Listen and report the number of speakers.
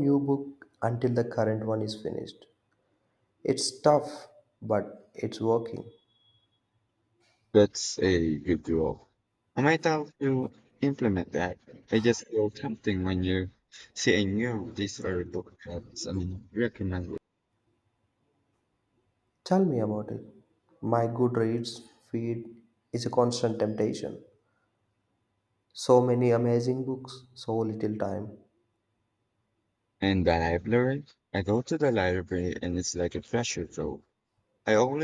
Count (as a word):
two